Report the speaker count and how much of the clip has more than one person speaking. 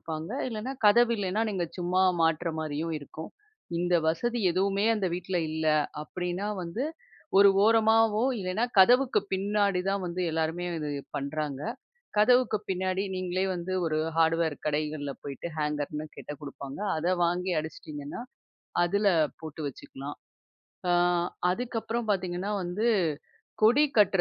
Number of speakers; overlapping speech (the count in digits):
1, no overlap